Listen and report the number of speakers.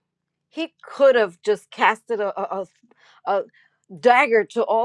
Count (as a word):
one